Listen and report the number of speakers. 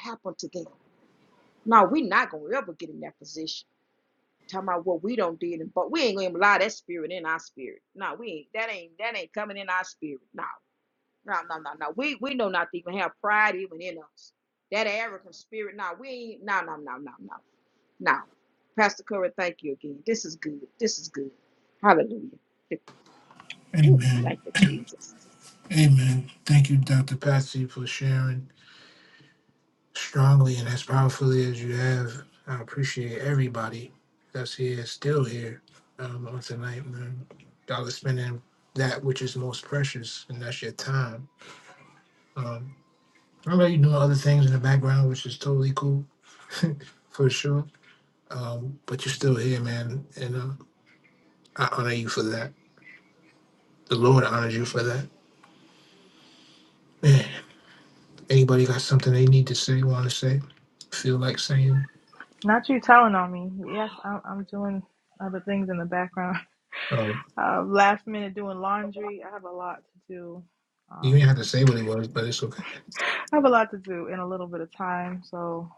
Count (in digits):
3